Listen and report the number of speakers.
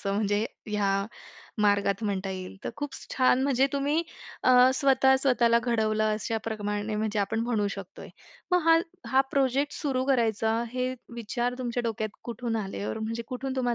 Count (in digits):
1